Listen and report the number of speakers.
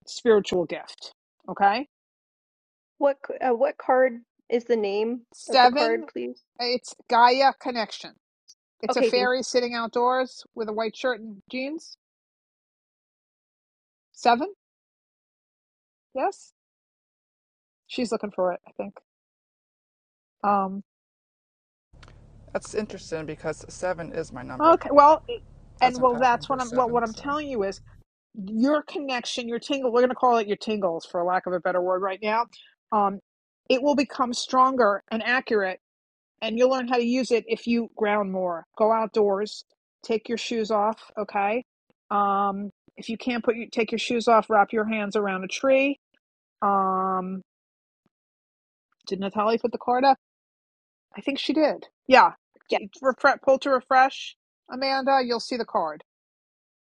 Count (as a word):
three